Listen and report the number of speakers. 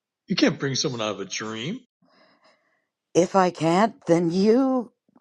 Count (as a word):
two